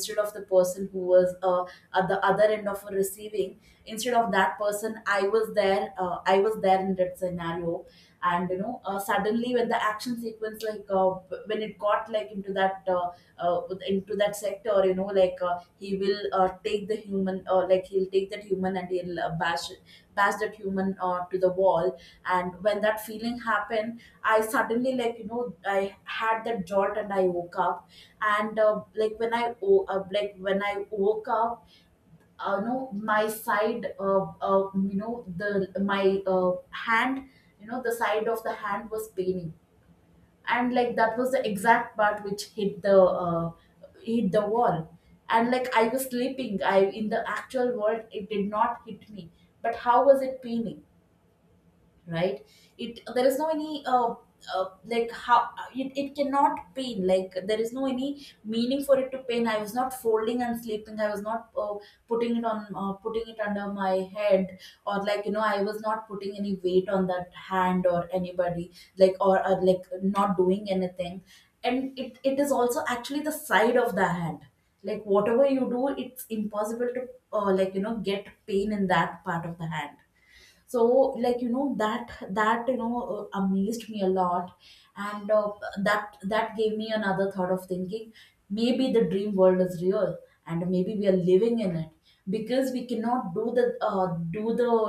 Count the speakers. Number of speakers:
1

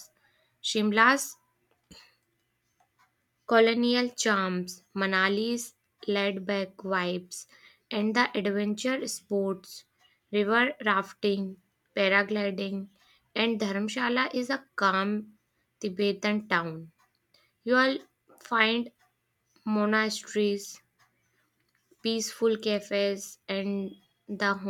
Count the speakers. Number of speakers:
1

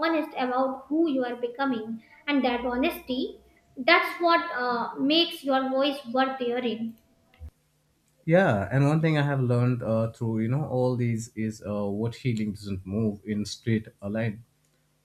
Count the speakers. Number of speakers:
2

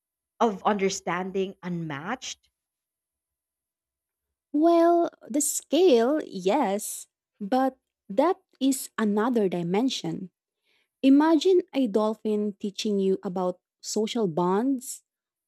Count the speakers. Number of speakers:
2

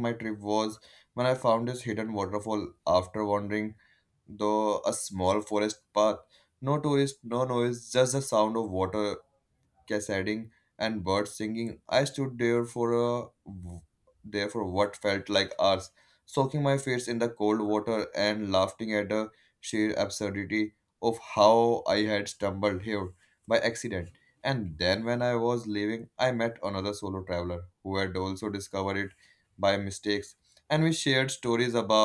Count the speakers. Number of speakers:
1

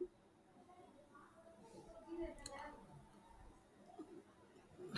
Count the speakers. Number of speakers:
0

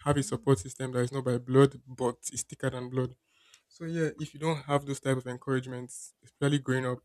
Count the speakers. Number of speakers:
1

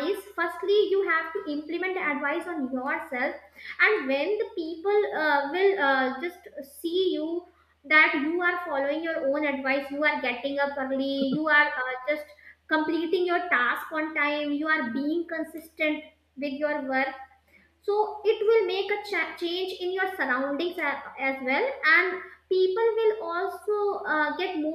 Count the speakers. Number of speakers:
1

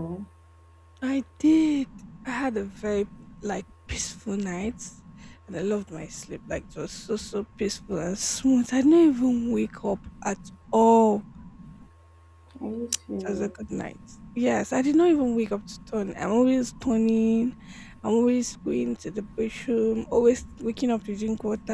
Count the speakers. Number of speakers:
2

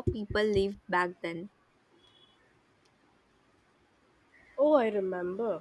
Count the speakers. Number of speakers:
2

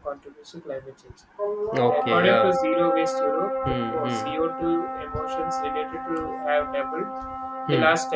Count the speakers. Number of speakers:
2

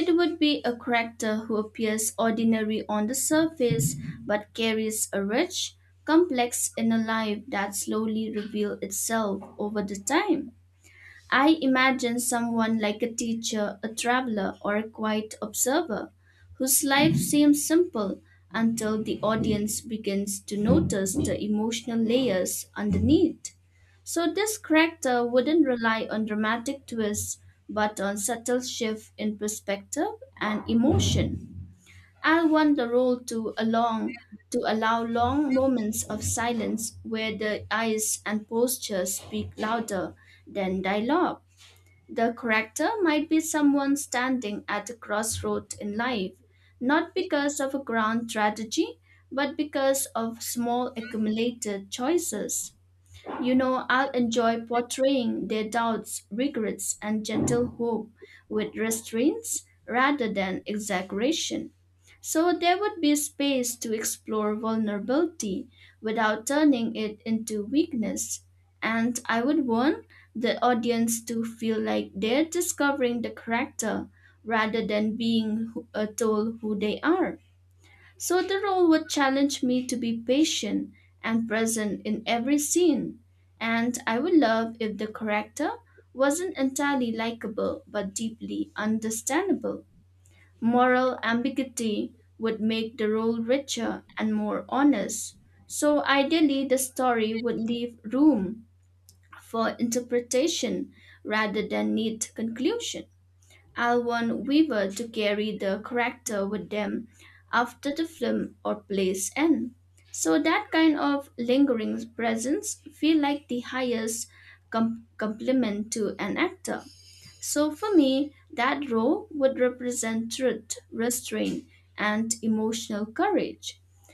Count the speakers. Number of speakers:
1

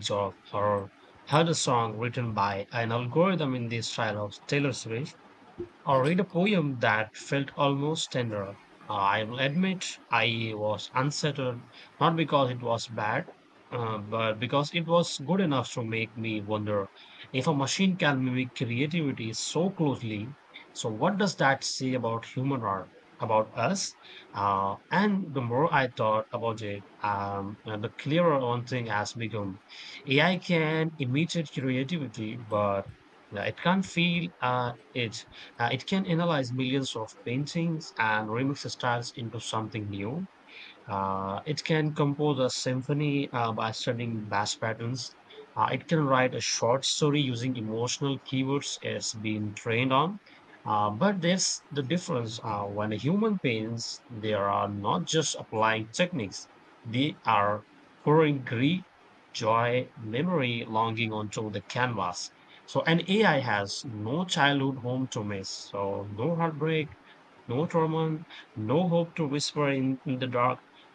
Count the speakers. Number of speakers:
1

